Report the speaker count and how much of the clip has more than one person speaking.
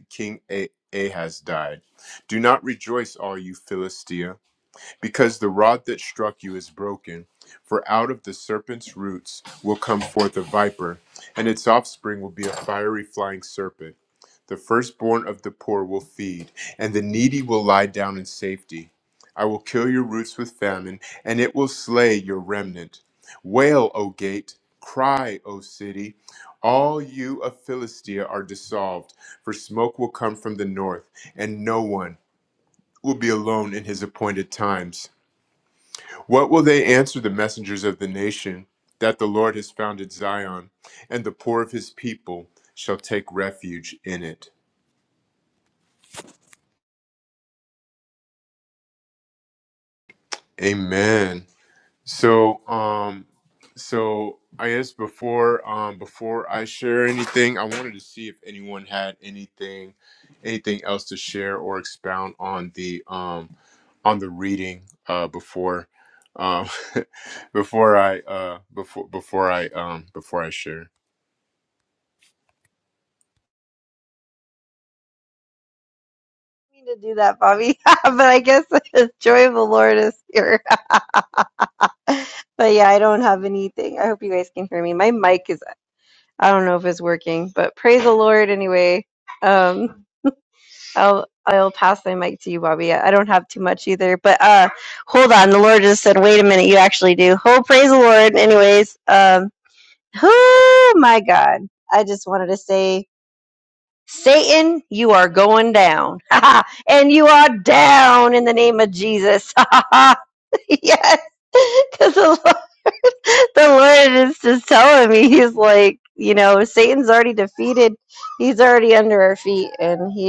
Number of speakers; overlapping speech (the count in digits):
2, no overlap